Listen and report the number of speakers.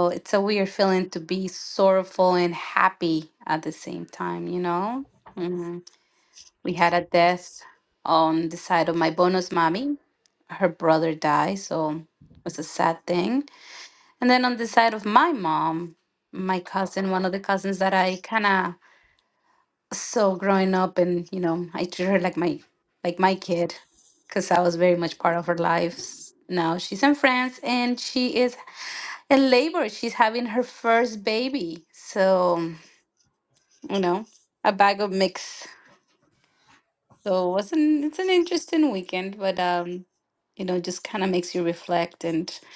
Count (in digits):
1